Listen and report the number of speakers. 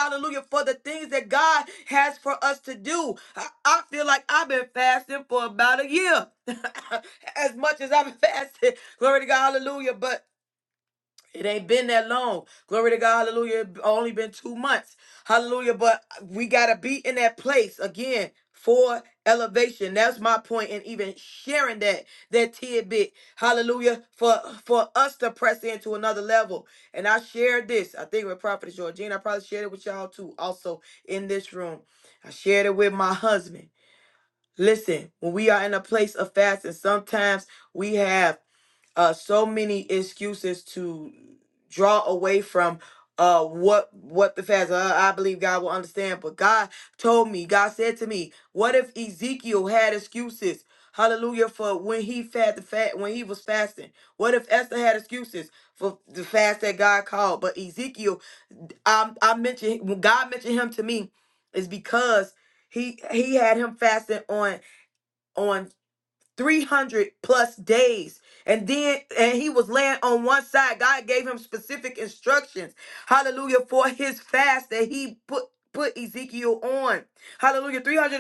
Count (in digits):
1